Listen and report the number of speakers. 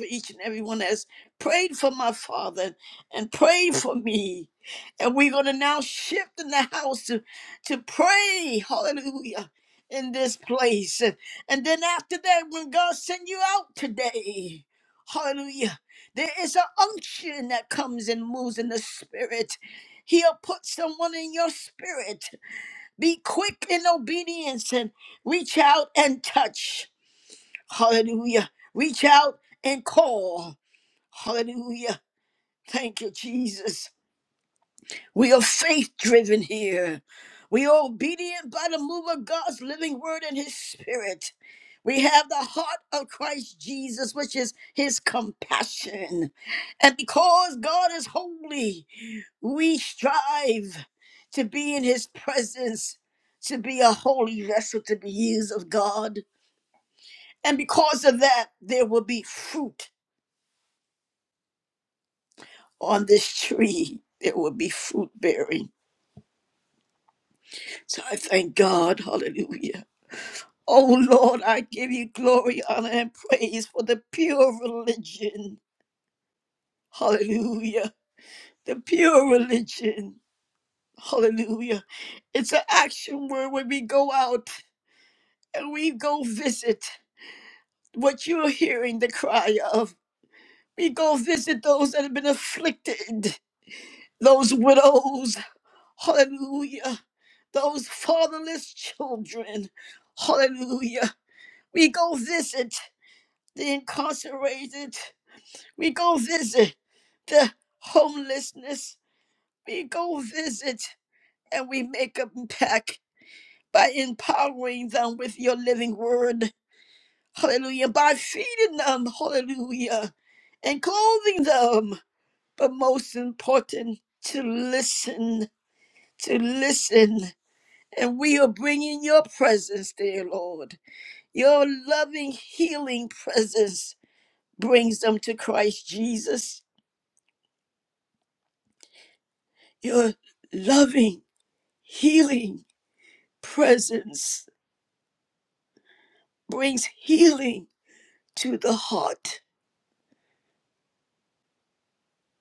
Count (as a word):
one